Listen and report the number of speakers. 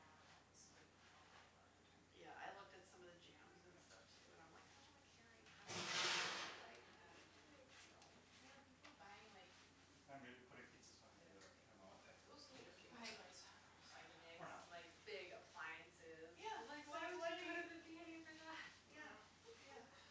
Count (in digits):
4